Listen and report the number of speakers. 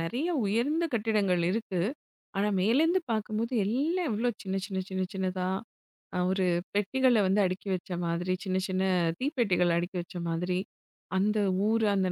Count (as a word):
one